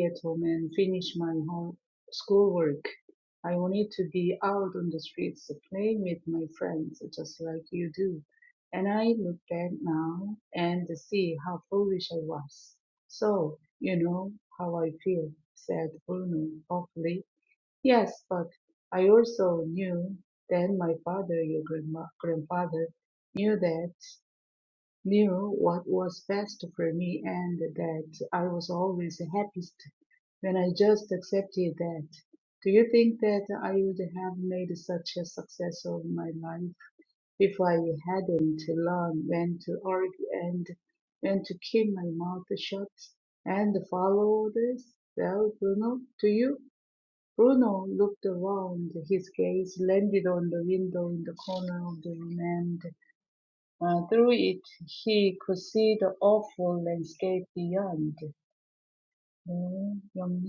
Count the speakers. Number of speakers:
1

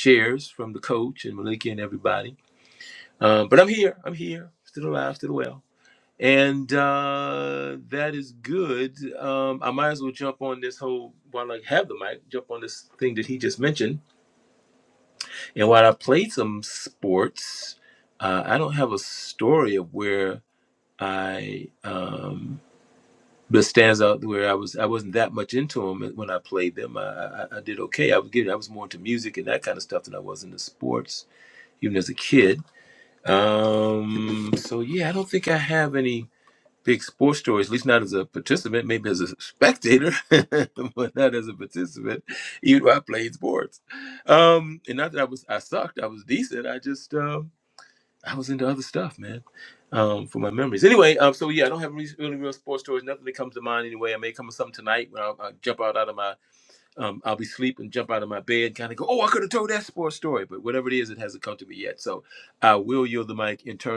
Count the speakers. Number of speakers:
1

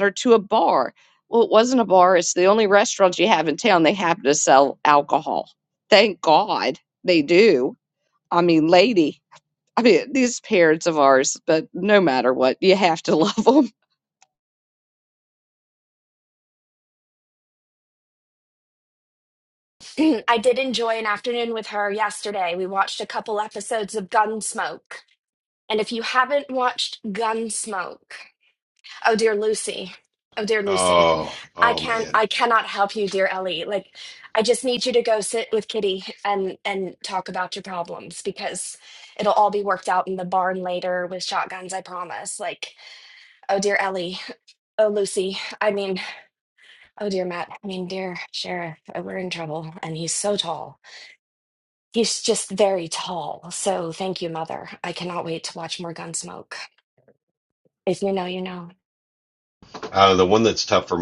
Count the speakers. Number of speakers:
3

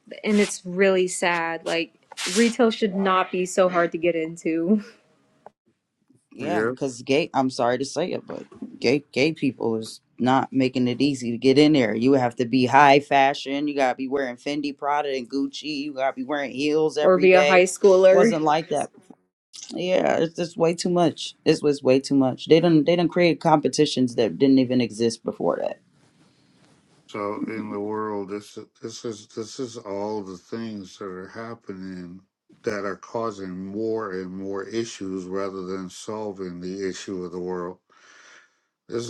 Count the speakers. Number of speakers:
3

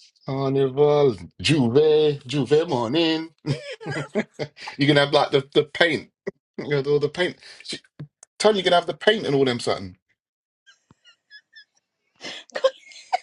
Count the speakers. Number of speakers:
1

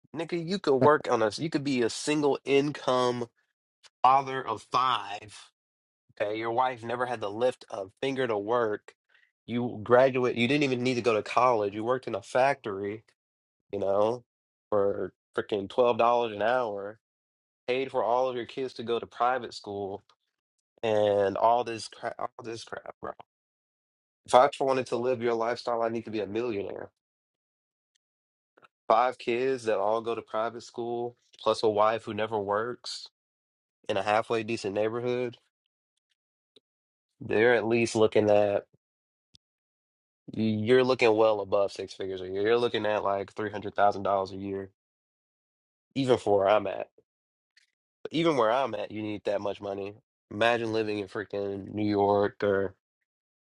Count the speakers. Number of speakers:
1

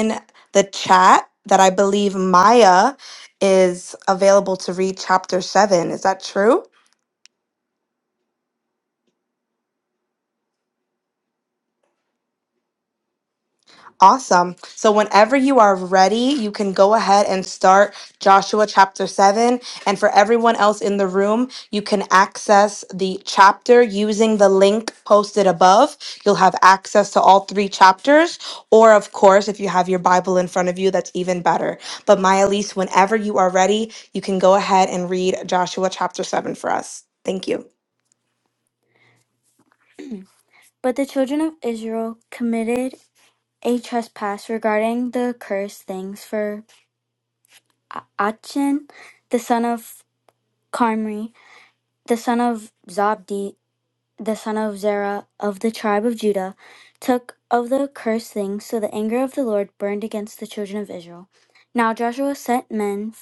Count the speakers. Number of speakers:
2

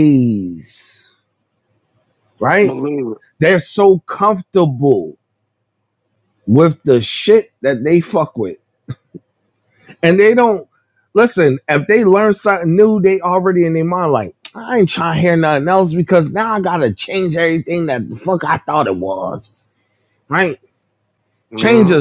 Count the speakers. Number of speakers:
2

